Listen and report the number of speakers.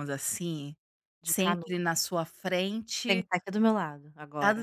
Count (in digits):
2